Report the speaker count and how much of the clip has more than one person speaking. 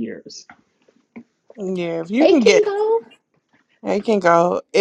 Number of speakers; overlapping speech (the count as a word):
two, about 10%